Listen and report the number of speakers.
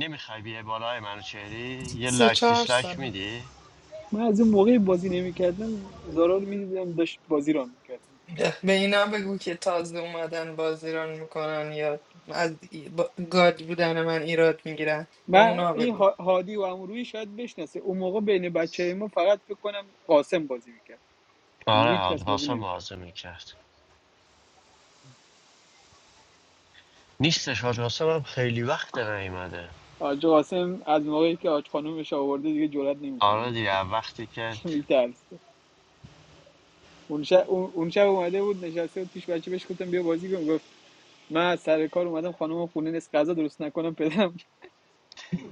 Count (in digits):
3